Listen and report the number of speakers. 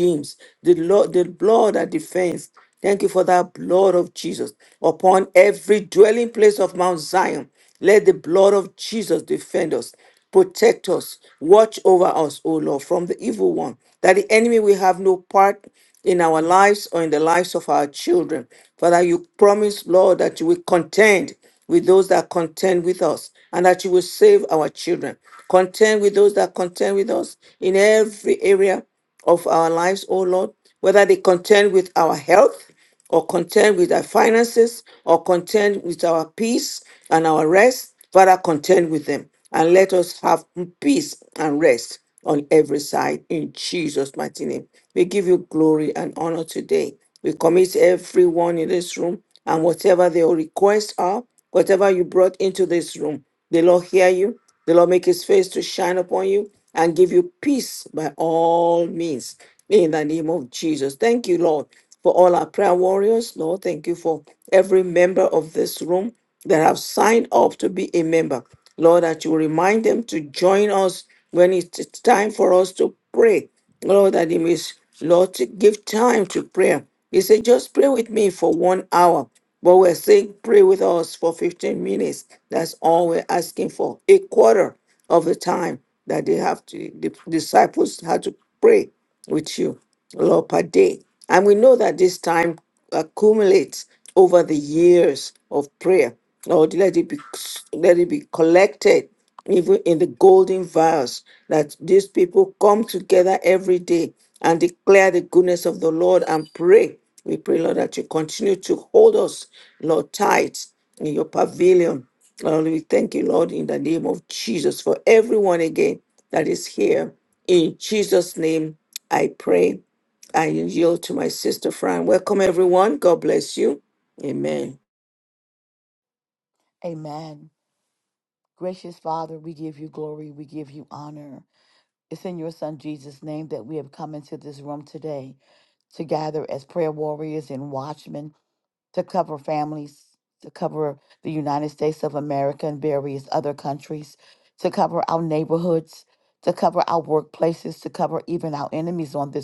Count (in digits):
2